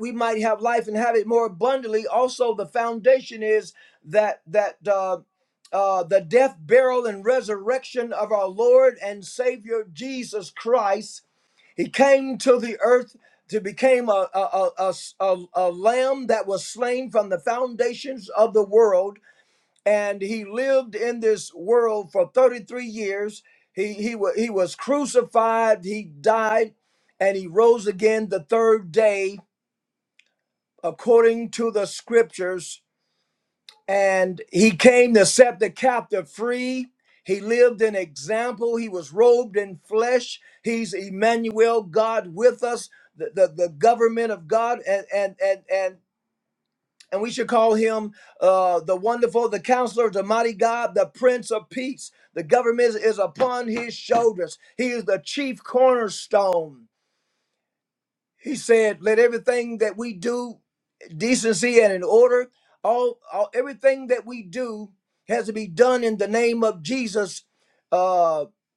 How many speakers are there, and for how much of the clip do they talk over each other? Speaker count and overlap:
1, no overlap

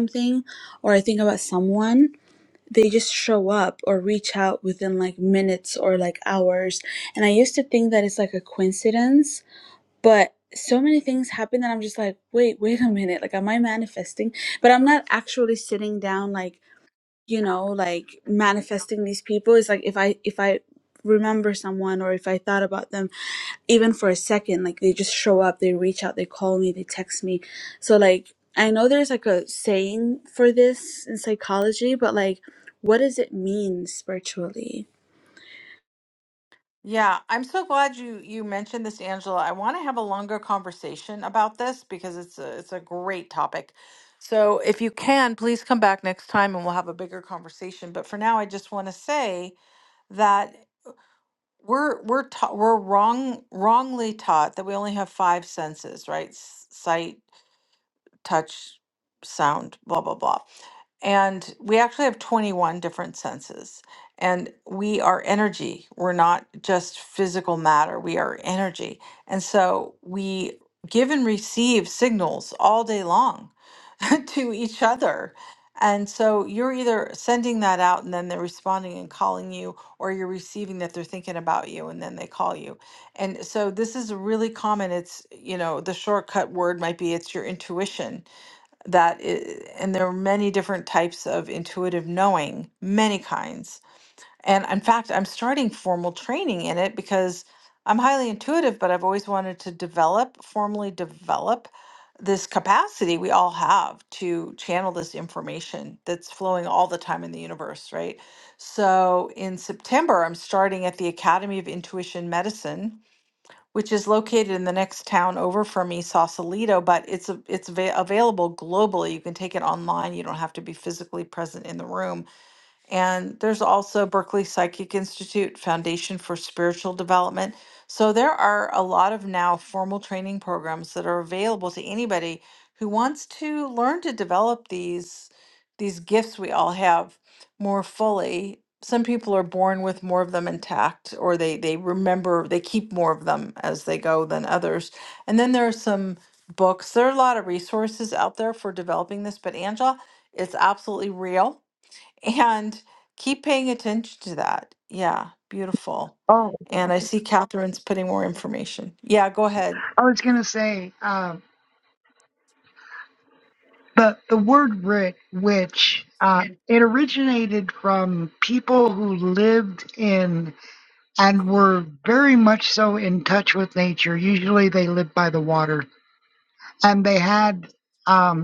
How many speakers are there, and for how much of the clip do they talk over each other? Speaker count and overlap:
3, no overlap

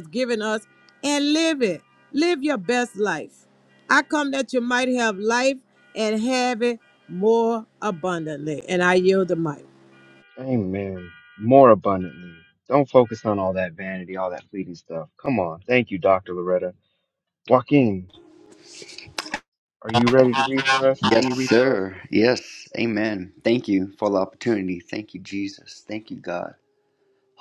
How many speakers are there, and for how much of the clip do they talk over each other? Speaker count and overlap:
3, about 3%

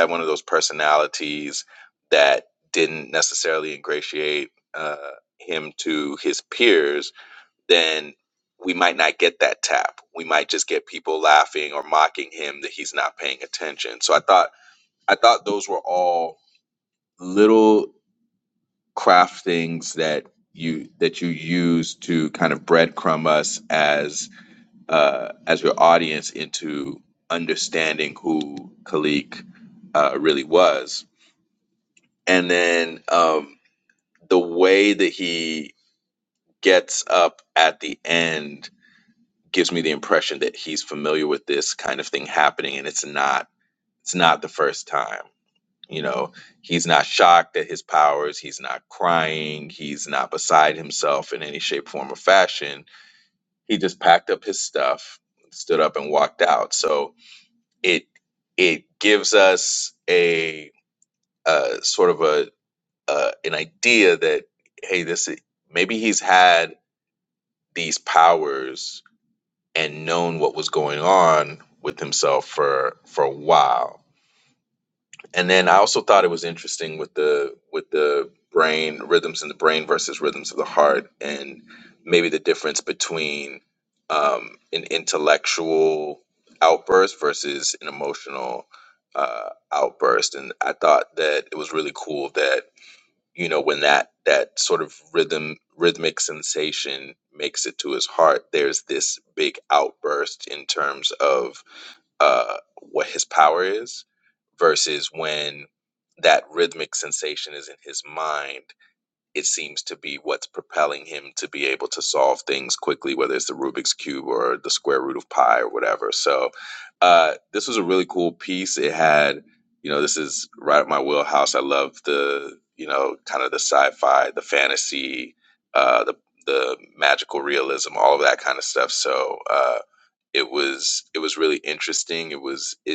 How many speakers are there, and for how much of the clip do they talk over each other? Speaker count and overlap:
1, no overlap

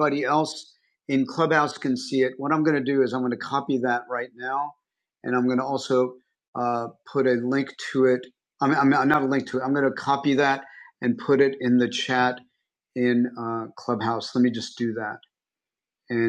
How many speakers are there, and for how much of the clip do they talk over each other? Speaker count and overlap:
1, no overlap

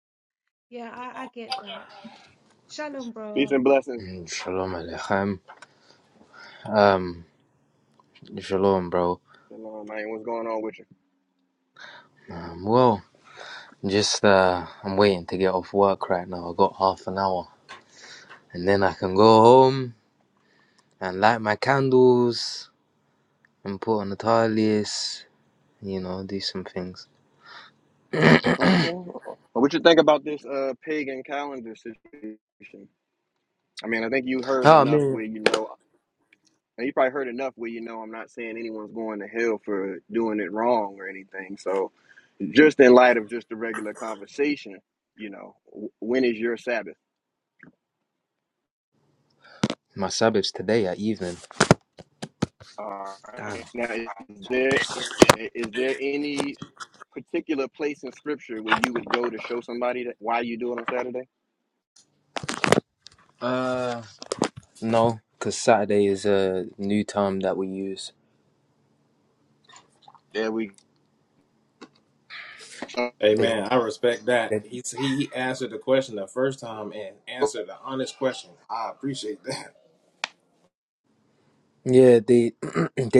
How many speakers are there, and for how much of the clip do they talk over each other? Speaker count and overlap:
4, about 2%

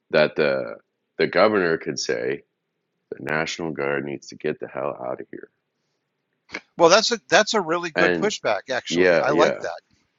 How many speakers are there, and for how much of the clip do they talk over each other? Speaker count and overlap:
2, about 11%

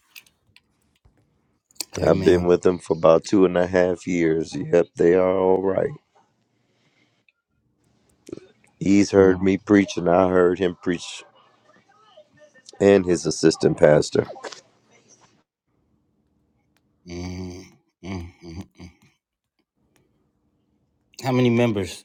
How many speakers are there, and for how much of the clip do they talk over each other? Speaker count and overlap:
2, about 3%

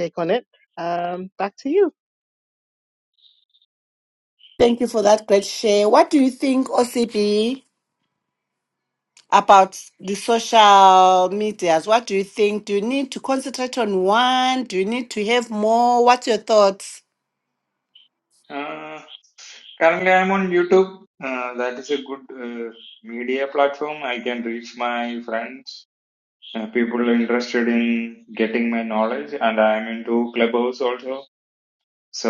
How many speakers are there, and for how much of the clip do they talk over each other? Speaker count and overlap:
3, no overlap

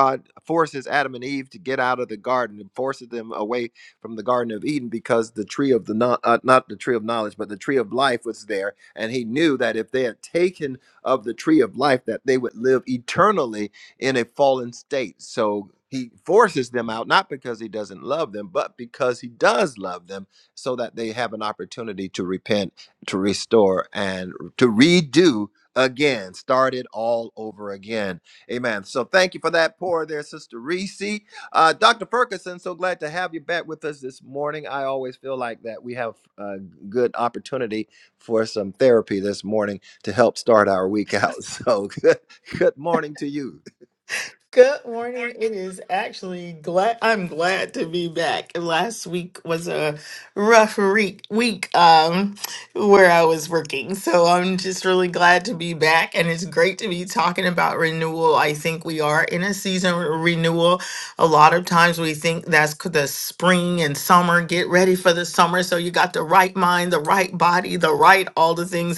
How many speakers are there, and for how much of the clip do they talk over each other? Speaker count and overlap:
2, no overlap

